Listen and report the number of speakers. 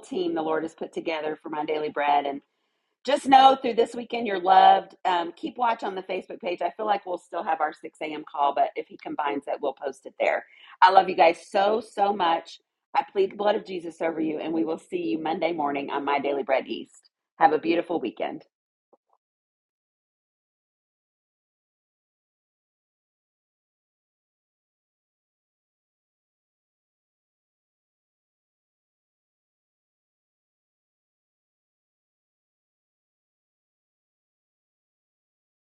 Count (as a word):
one